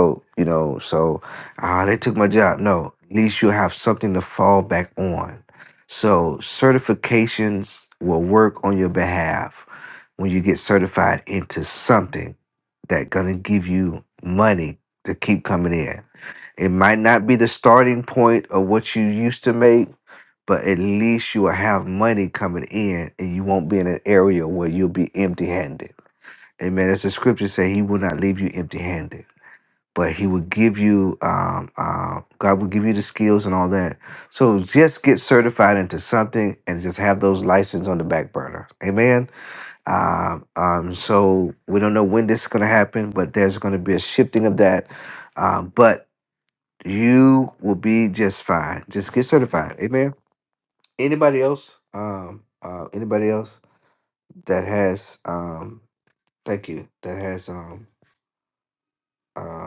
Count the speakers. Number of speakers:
1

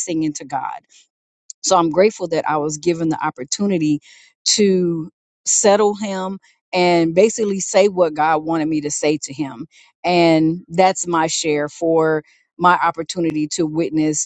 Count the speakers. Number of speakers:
1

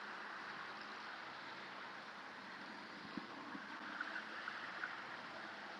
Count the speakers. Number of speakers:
0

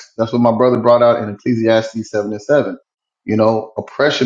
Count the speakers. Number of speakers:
1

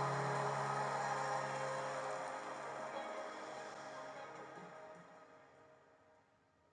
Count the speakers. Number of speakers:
0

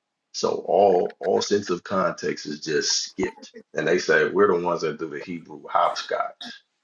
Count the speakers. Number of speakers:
1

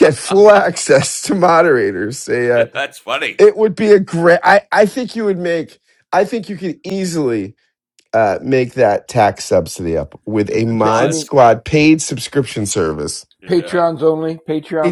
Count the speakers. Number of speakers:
3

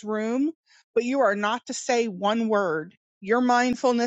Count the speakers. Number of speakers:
1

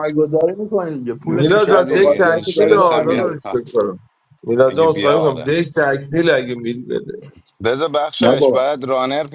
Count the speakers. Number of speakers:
3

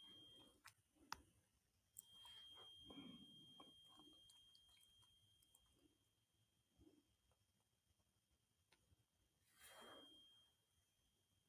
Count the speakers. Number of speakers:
0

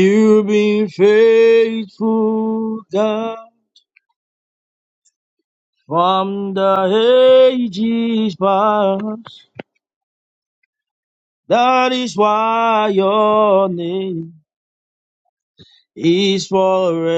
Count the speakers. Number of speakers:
1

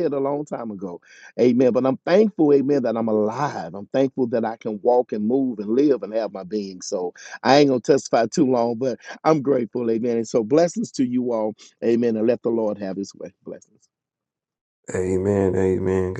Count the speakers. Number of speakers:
2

